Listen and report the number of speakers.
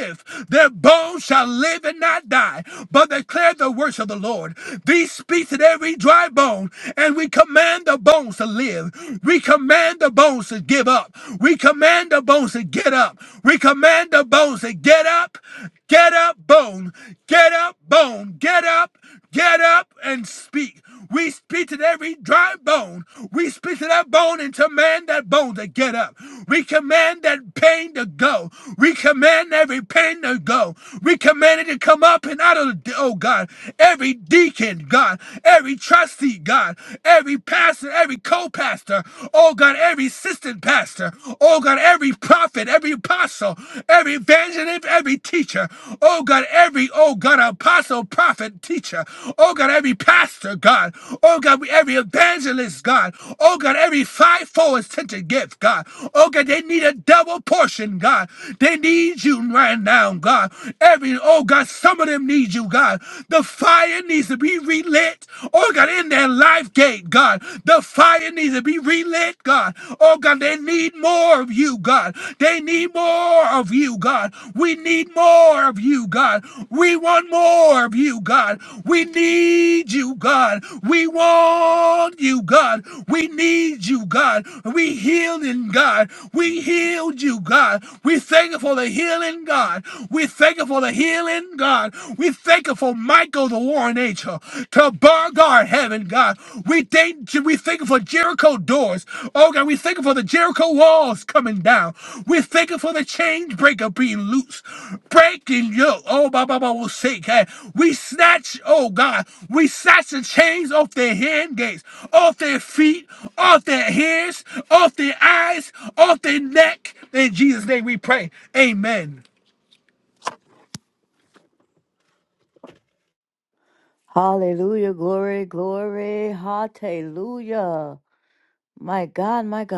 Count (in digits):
2